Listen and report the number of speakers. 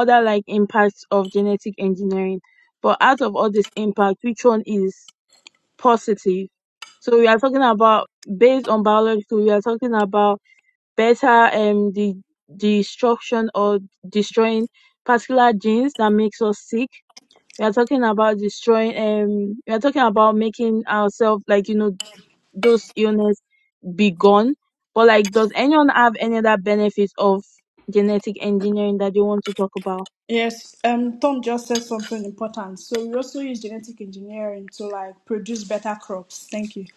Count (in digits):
2